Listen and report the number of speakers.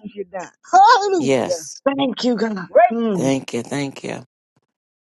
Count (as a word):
three